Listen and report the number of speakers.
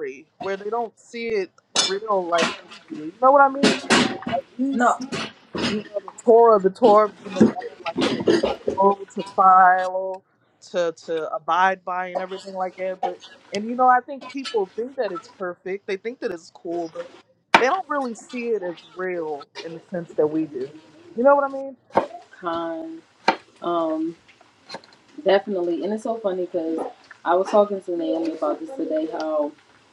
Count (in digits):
2